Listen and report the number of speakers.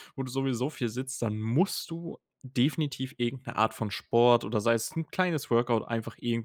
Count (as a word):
one